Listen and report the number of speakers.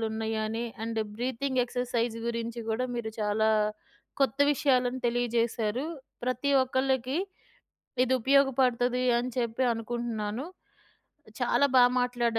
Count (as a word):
one